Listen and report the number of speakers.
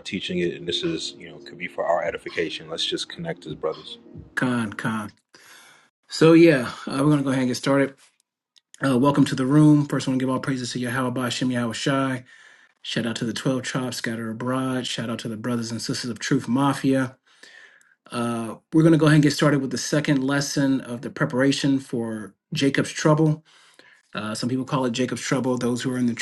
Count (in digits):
2